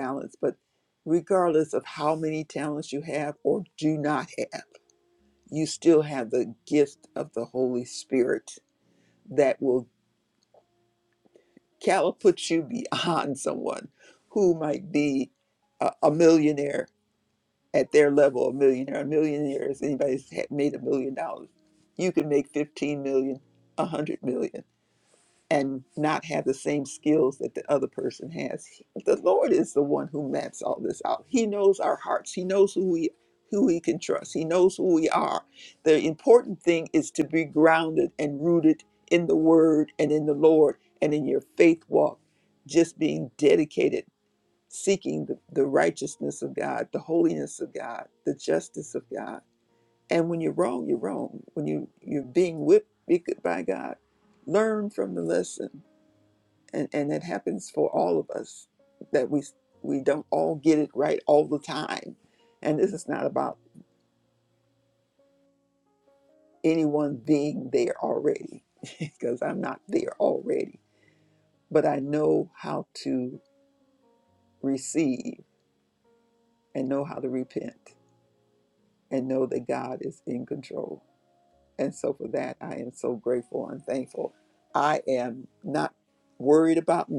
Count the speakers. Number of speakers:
one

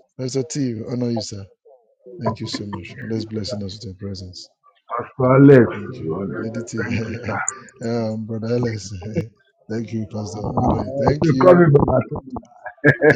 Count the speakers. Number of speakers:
two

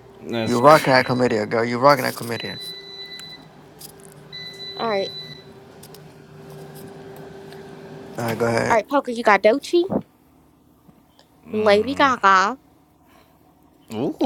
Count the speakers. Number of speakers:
three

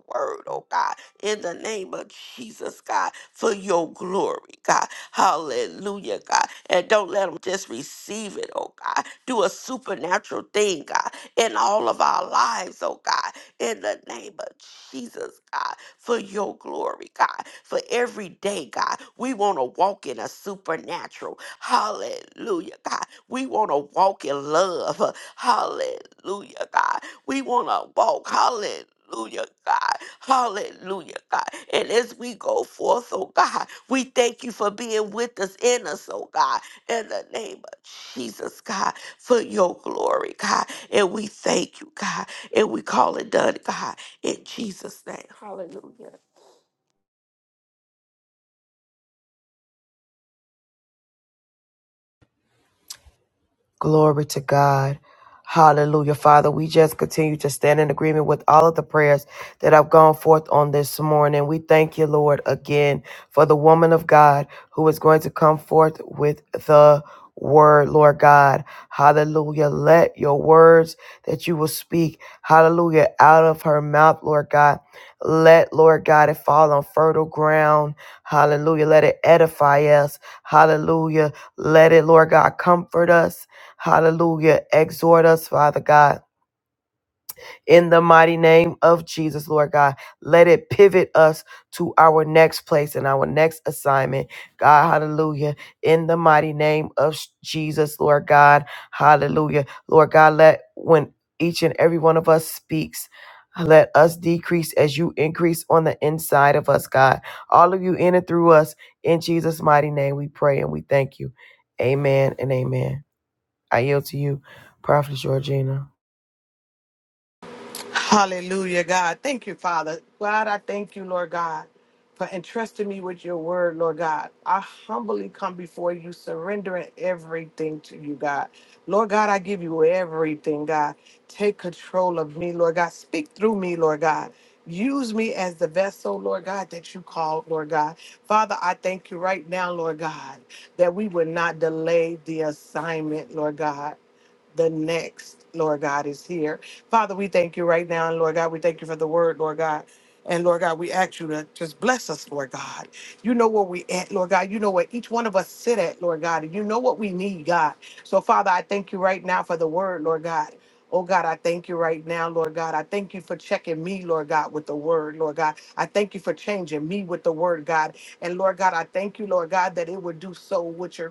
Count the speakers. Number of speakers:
three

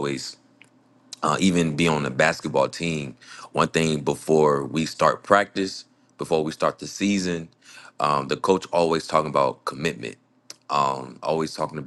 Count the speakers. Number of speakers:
one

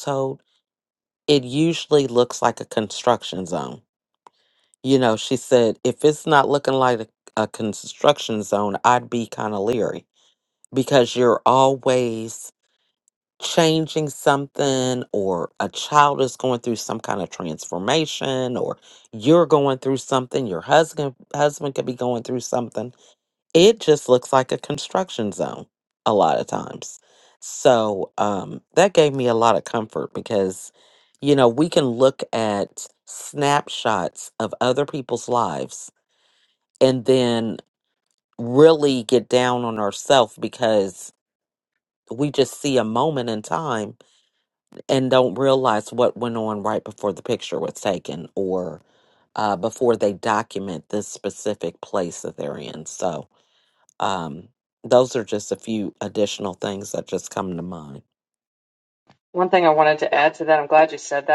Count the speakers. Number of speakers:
two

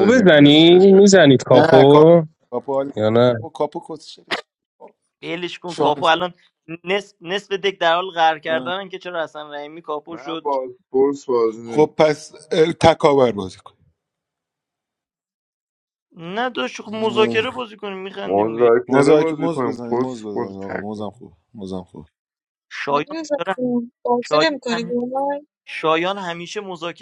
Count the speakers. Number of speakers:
five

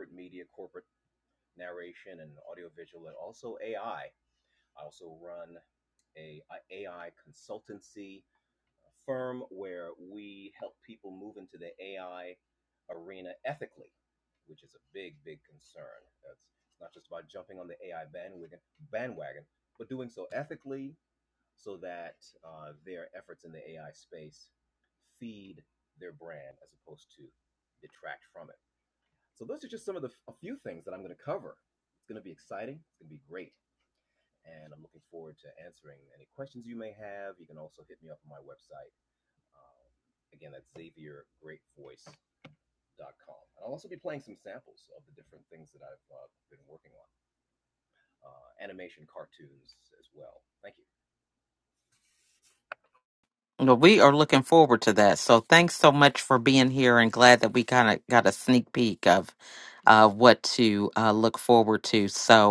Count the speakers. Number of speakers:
two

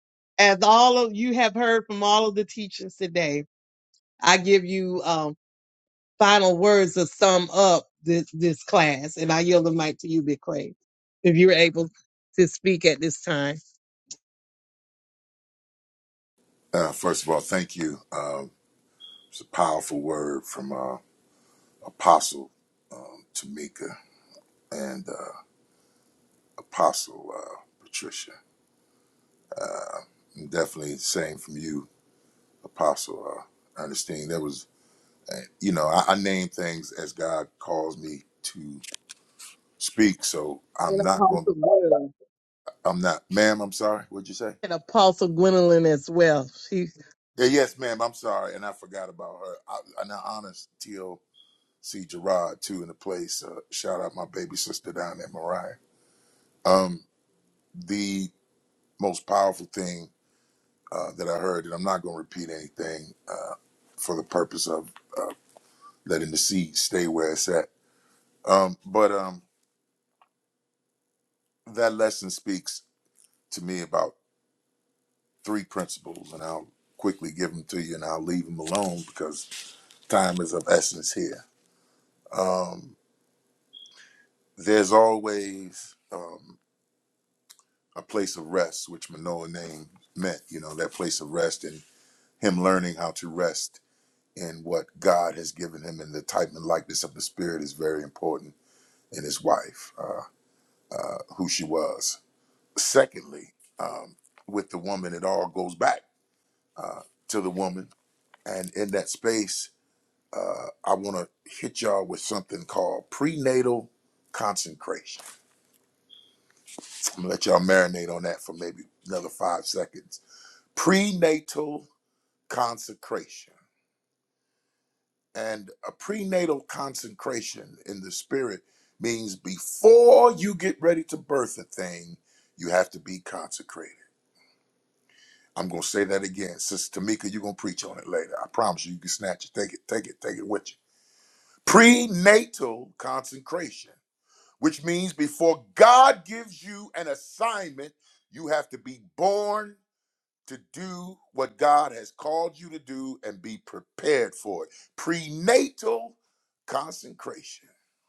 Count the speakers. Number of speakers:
two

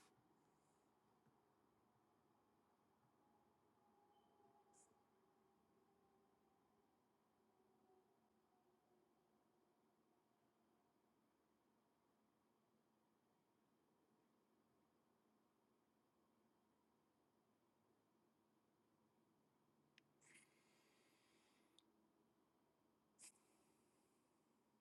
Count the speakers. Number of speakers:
zero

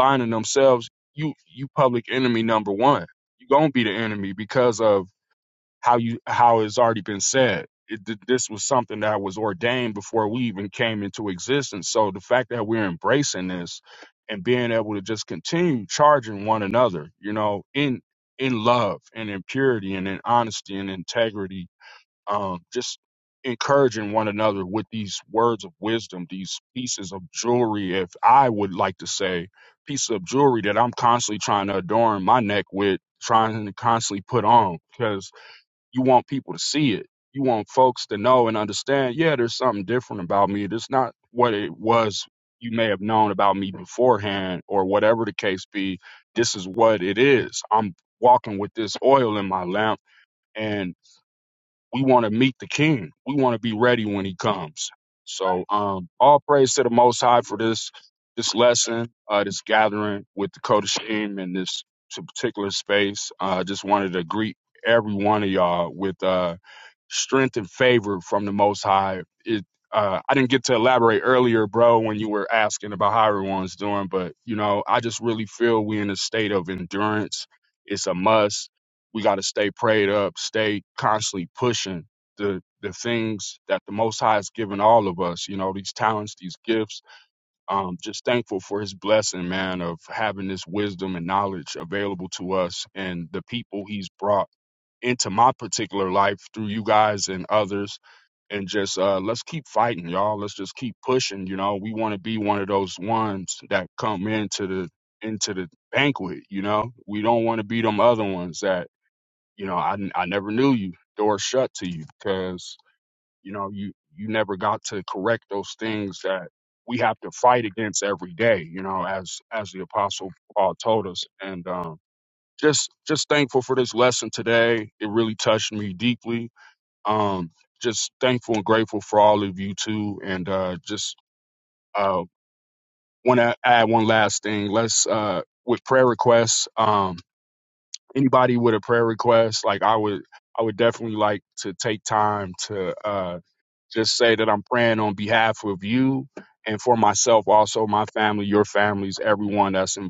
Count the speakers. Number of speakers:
one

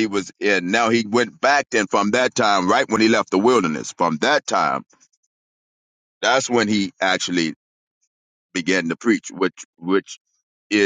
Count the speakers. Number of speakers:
one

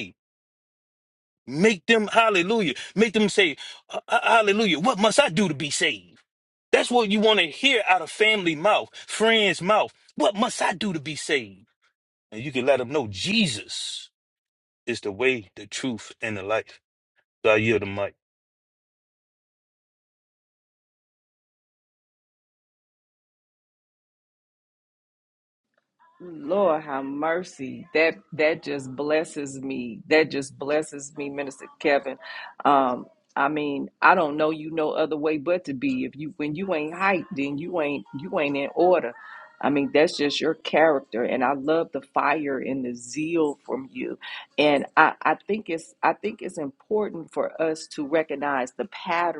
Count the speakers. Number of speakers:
two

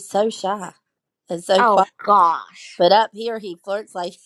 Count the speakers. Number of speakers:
two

